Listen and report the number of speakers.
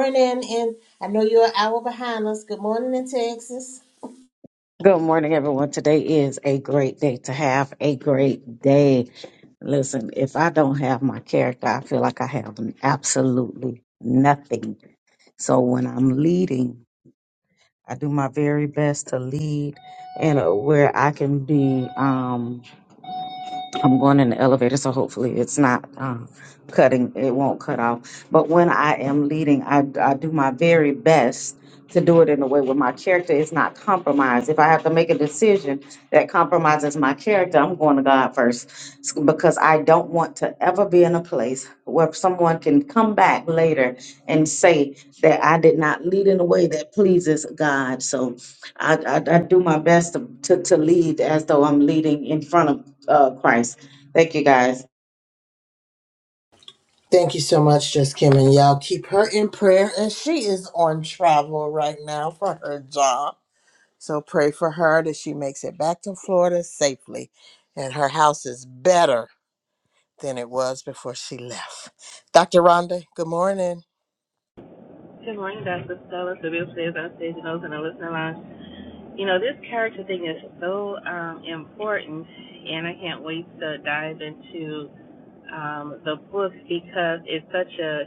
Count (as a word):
three